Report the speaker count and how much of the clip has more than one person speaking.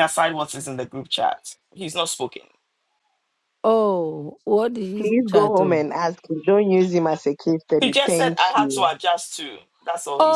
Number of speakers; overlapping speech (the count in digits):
3, about 19%